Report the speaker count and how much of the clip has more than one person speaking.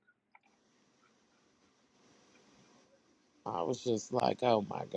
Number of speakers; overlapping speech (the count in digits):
1, no overlap